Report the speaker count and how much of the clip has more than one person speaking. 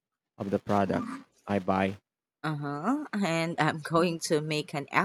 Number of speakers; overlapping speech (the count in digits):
2, no overlap